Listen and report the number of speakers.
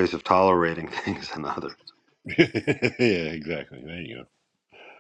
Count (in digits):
2